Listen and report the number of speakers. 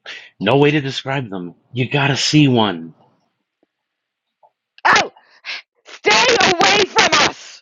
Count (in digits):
2